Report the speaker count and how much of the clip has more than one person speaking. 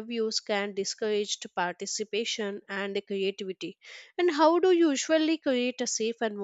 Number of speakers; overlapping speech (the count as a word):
one, no overlap